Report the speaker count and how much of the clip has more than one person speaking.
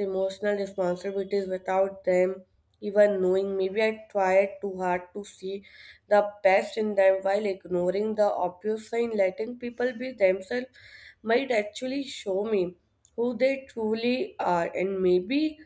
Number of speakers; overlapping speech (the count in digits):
1, no overlap